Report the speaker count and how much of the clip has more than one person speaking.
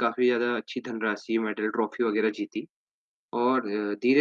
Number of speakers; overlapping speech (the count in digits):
1, no overlap